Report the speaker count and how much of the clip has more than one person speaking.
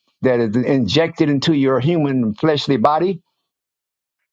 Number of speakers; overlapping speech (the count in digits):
1, no overlap